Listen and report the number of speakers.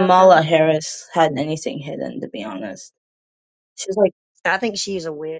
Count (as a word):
two